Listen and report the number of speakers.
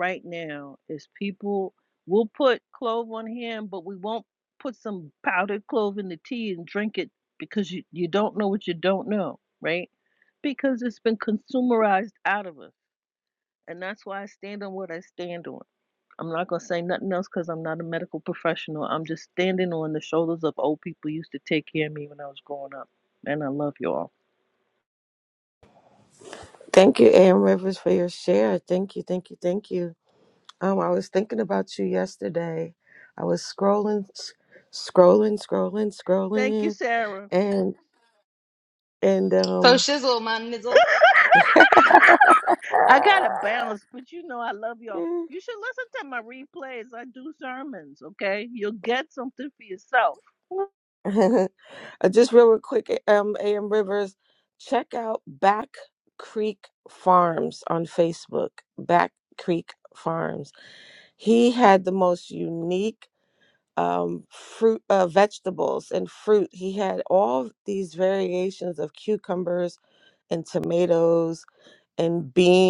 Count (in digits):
3